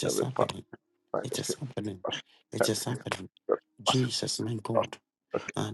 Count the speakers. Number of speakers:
two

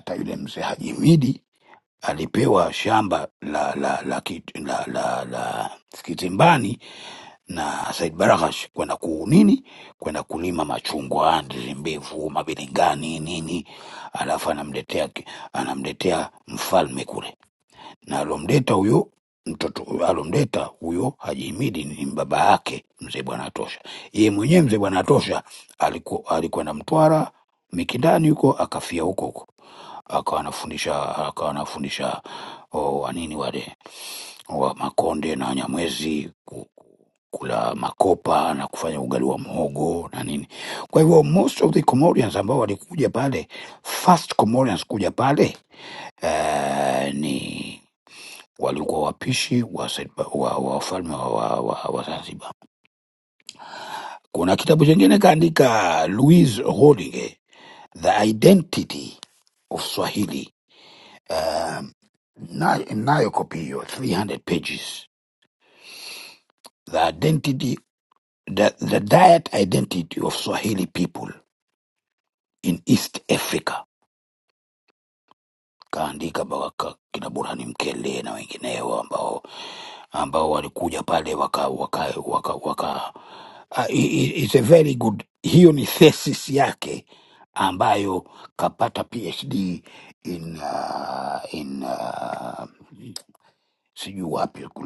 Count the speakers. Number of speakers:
one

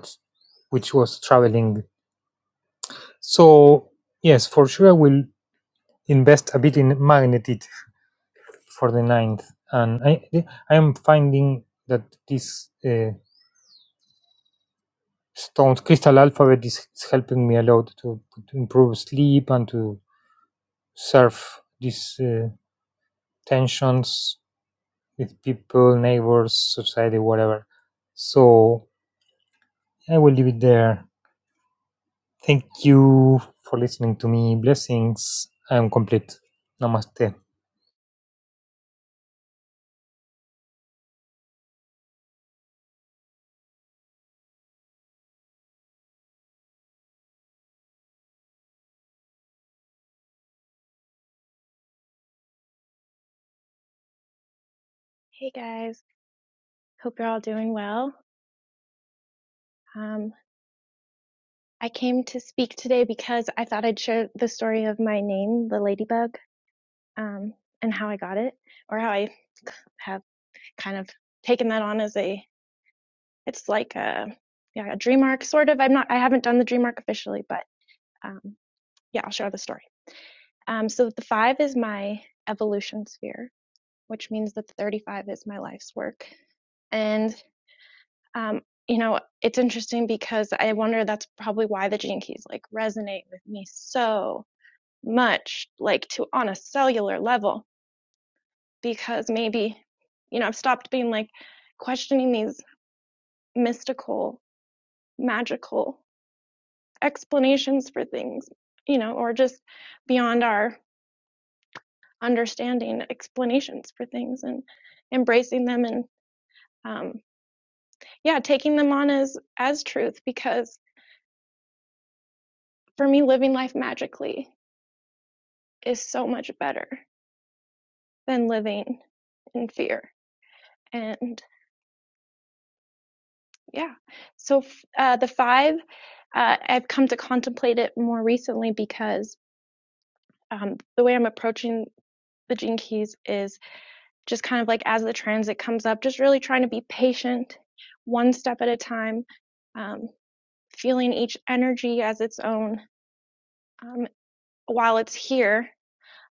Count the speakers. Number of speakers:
two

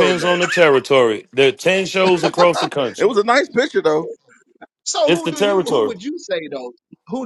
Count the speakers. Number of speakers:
three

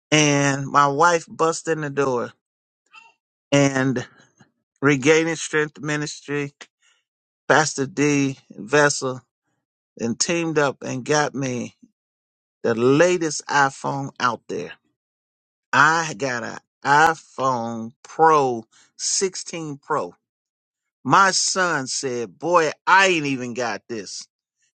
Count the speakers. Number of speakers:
one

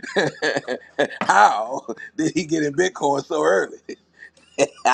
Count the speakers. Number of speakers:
one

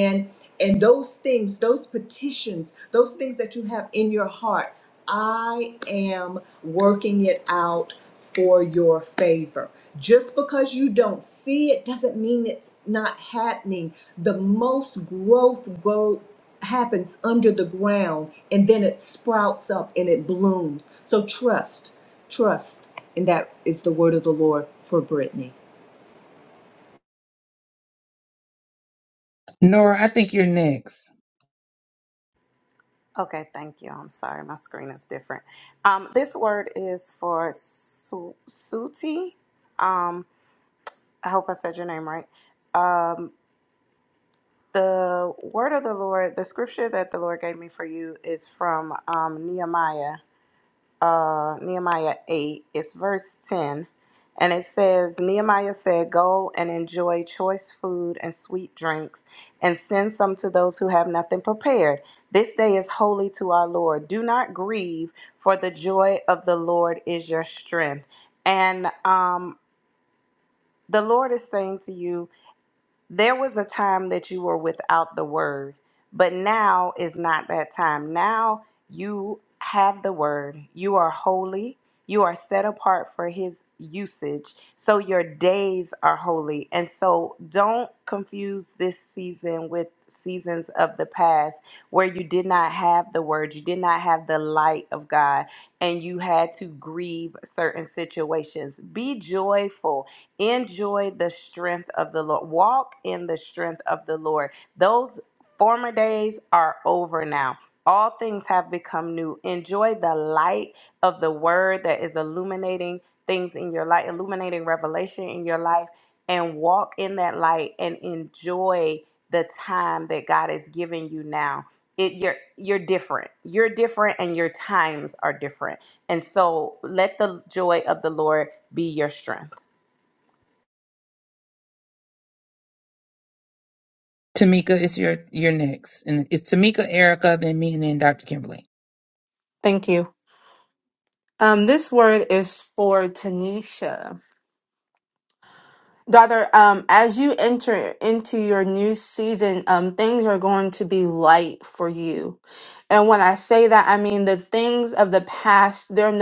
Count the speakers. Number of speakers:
four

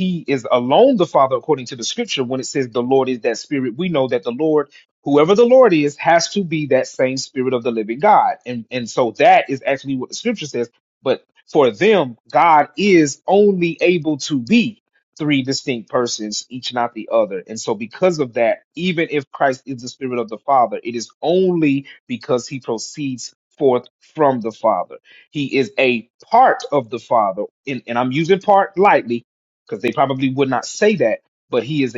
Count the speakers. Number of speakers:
one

